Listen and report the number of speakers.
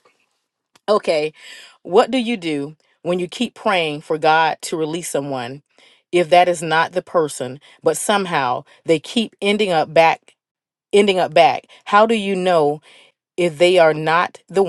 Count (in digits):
1